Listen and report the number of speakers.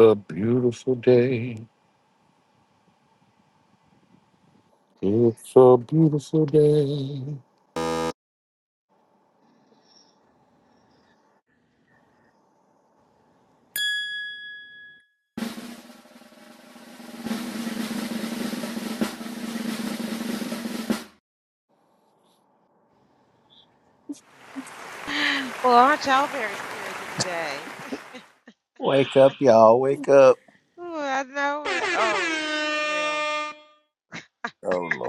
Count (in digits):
3